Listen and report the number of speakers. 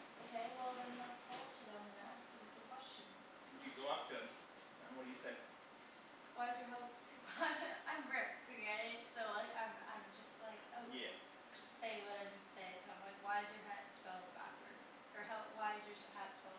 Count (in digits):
2